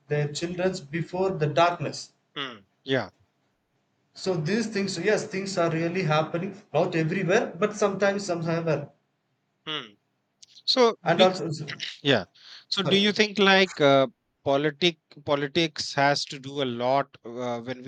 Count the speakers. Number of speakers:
2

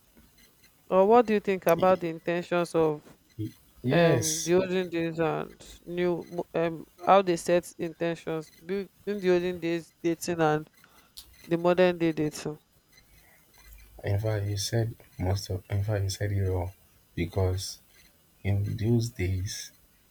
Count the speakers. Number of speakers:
2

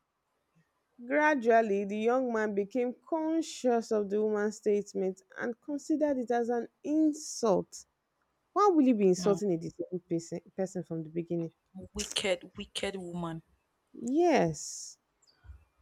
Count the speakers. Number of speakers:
2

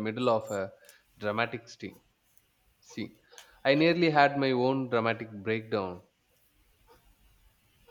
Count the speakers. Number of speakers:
1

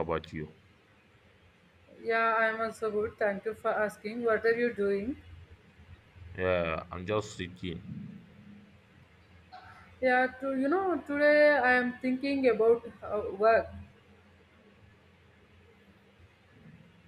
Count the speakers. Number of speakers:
2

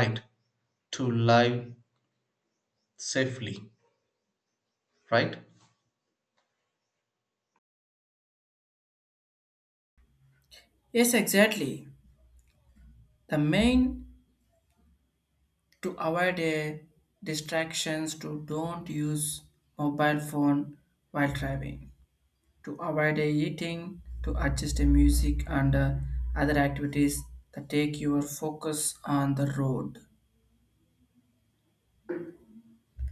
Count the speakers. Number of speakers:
2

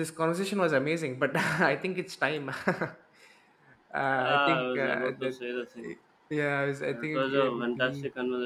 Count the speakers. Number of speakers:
2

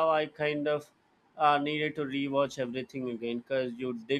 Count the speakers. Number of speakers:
1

